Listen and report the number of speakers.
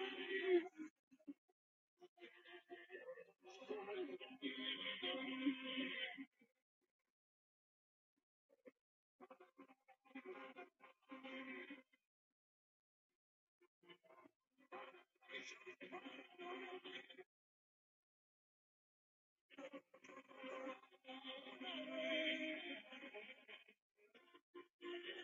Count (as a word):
zero